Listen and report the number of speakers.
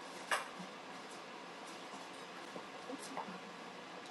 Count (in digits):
0